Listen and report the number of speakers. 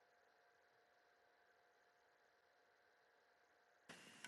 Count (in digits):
0